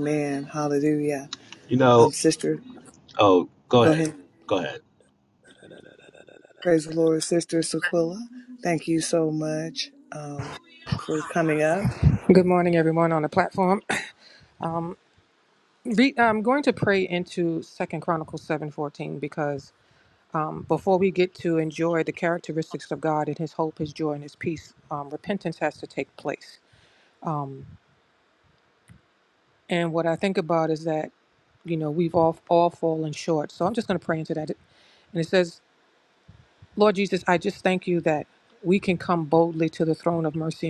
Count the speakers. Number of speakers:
three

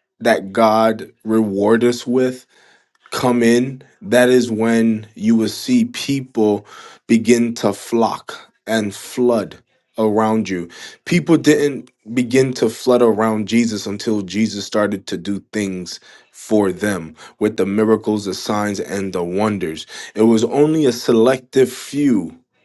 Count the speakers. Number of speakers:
one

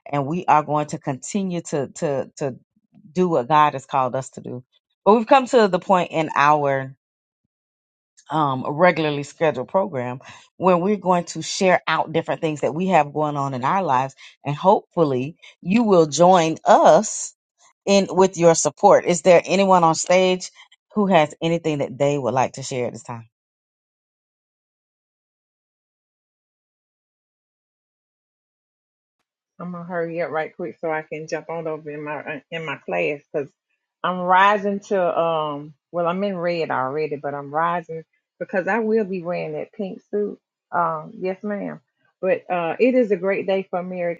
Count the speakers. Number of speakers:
two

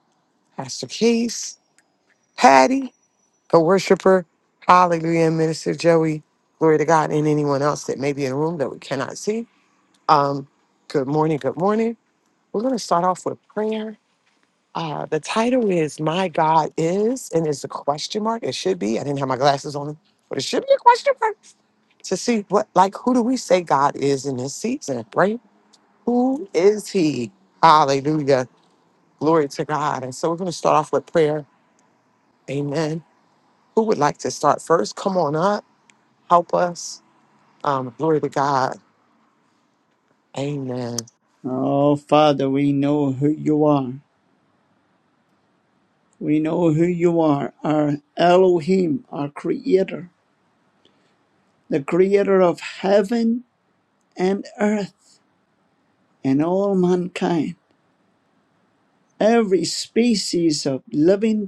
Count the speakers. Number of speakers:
two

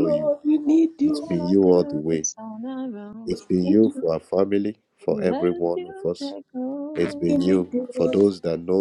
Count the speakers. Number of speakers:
three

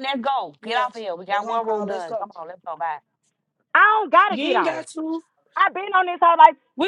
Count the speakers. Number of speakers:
three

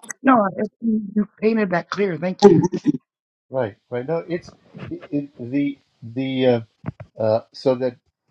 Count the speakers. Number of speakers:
two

